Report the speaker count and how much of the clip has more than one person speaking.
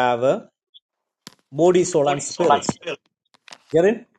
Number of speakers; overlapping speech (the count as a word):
one, no overlap